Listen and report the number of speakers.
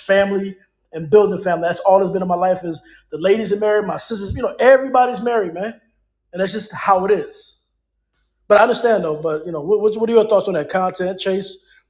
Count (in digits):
1